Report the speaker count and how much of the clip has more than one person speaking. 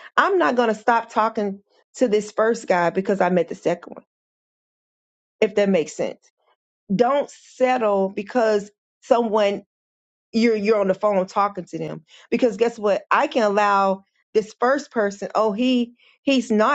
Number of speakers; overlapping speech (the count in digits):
1, no overlap